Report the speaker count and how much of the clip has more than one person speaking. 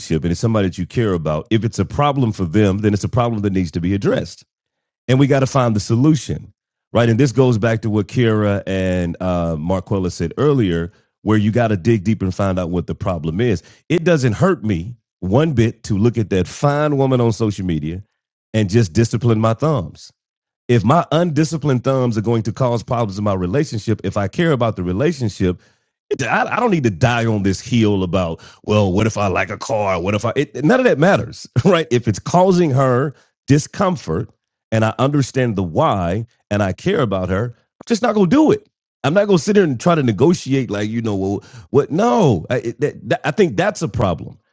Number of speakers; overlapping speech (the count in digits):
1, no overlap